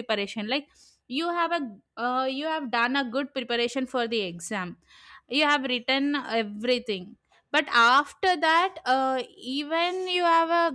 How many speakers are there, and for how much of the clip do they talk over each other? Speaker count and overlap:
one, no overlap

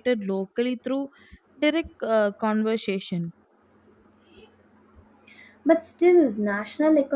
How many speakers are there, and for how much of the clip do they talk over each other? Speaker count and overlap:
two, no overlap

